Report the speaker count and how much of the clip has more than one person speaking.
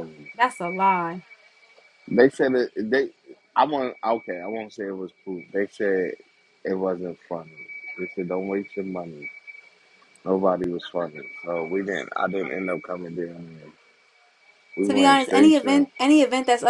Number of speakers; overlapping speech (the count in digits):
2, about 6%